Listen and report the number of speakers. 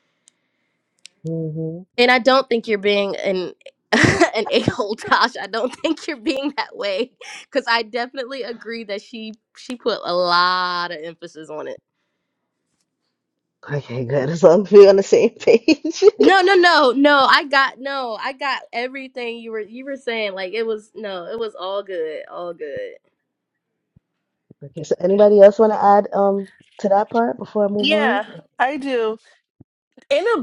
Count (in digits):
3